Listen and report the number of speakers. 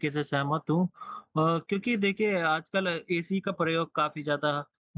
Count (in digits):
1